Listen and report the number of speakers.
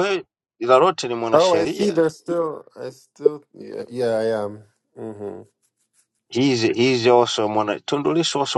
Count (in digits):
2